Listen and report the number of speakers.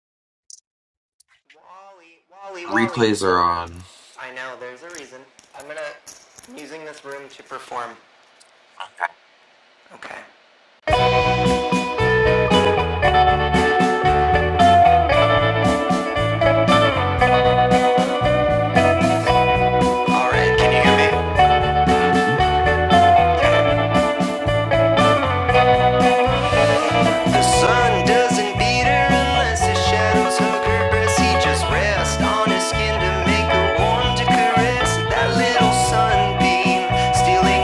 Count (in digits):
2